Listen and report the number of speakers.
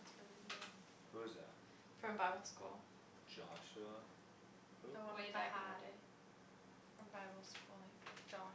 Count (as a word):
three